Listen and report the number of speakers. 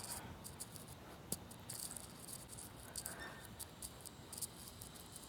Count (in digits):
0